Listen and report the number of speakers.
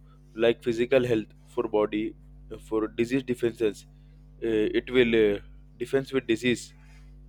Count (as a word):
one